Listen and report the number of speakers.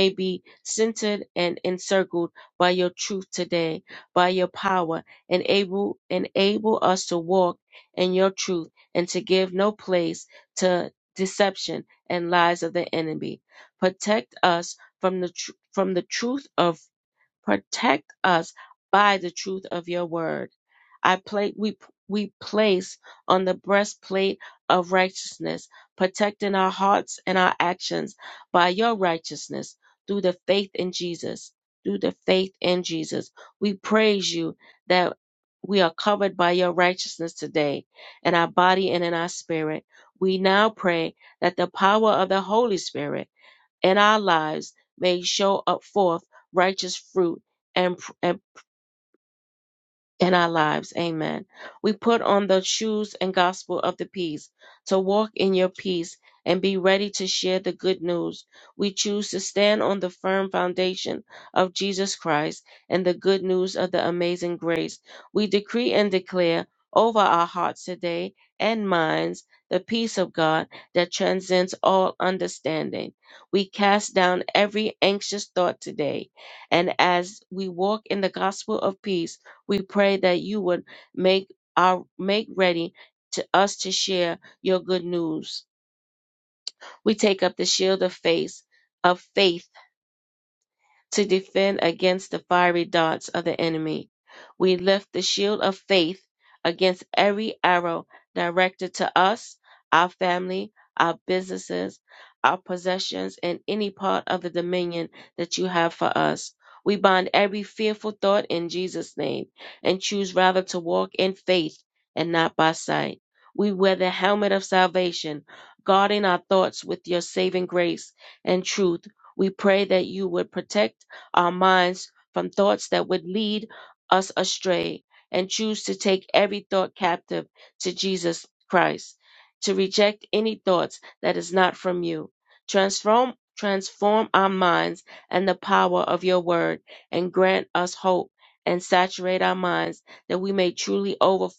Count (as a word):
one